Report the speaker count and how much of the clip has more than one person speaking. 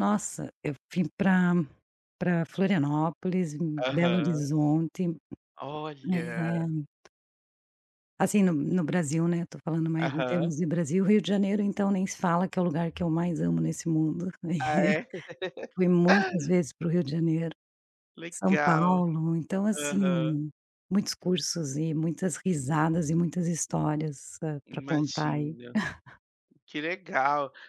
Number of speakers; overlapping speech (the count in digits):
2, about 15%